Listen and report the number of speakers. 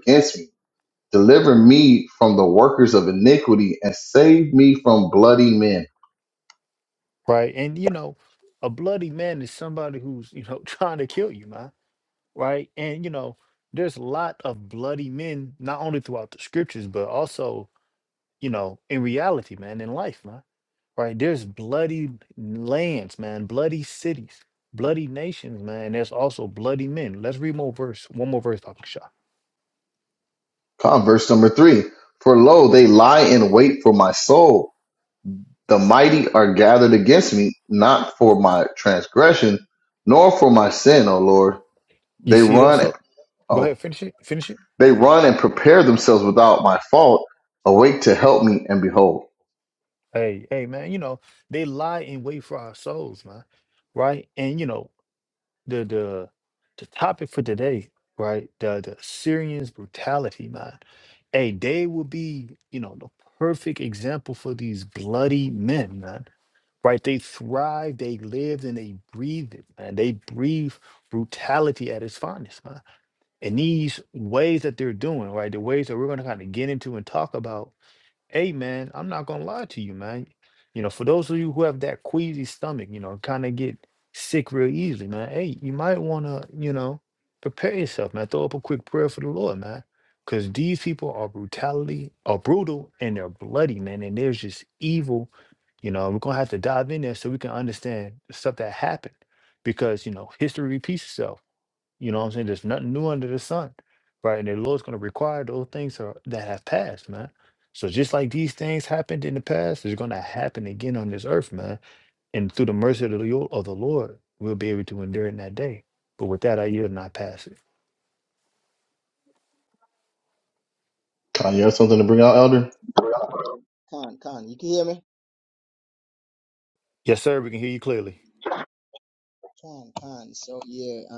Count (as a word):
three